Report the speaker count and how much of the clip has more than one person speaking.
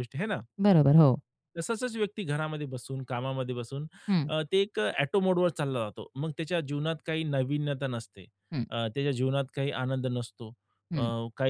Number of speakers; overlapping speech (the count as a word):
two, about 2%